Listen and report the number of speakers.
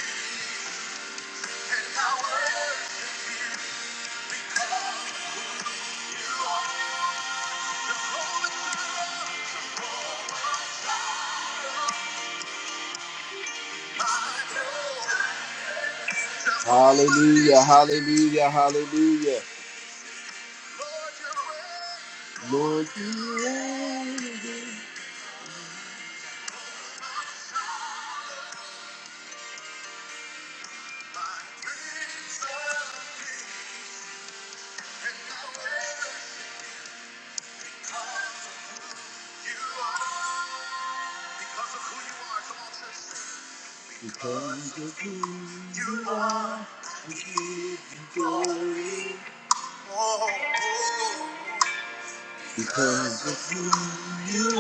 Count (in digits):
1